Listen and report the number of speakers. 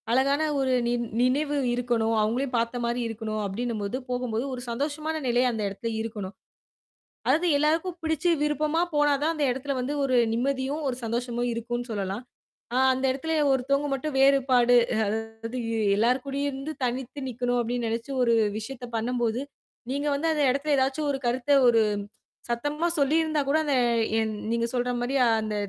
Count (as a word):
one